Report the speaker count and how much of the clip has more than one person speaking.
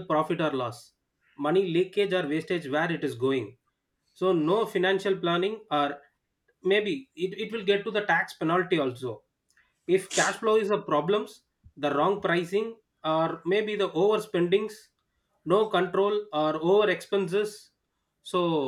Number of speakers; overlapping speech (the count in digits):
1, no overlap